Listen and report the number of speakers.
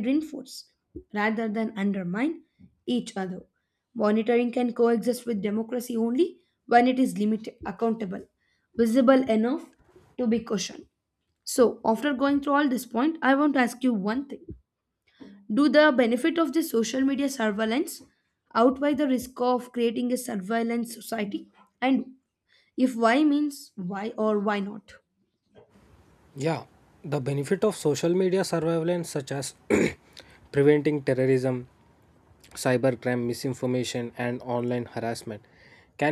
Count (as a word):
two